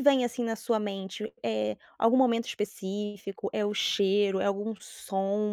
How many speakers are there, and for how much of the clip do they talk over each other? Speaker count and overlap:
1, no overlap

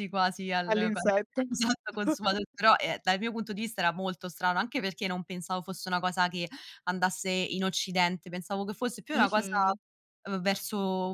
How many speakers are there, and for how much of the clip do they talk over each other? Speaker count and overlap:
2, about 7%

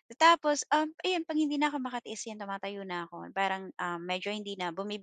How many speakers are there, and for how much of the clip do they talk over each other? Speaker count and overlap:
1, no overlap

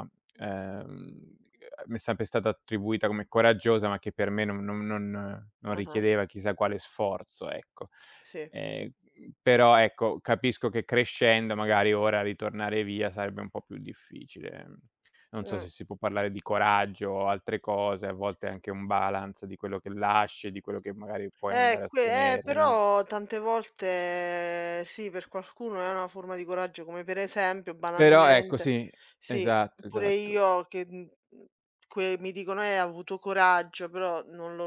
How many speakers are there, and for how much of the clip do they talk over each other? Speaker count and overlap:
2, about 9%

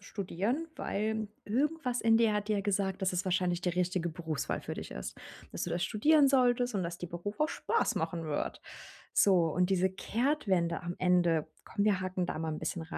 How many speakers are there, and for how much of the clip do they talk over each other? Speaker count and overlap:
1, no overlap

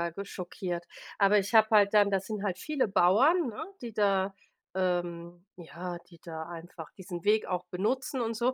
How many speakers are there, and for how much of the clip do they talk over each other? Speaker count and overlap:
1, no overlap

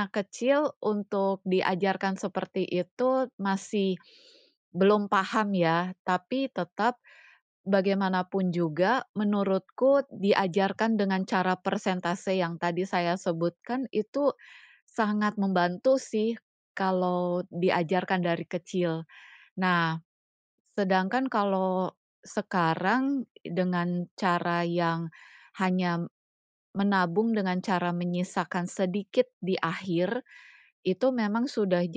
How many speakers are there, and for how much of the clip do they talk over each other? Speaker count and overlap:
1, no overlap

